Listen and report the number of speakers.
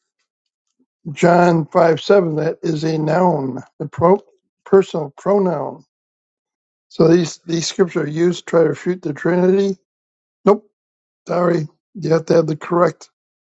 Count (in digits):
1